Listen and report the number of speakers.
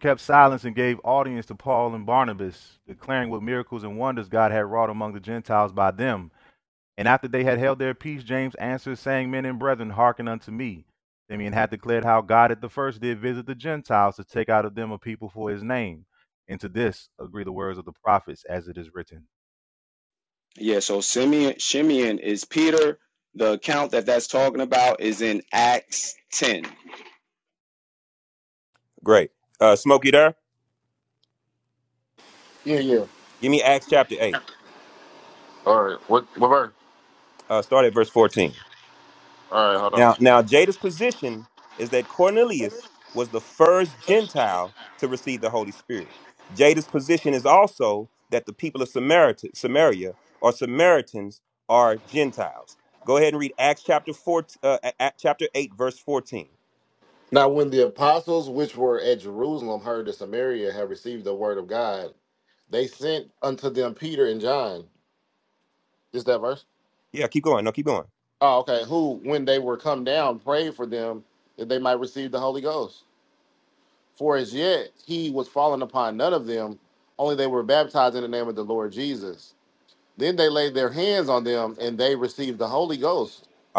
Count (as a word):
four